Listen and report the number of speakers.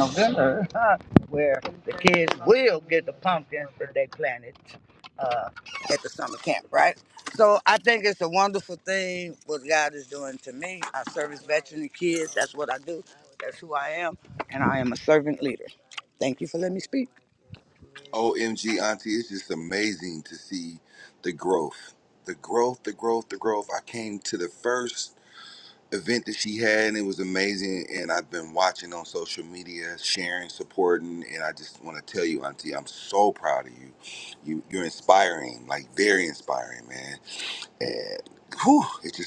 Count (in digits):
2